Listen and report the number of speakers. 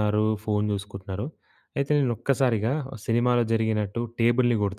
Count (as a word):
one